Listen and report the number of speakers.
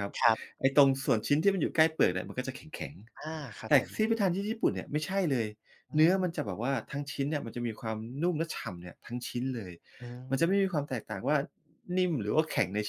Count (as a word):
two